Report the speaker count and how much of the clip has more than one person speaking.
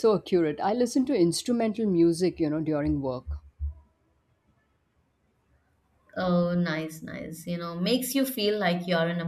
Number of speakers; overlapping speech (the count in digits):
2, no overlap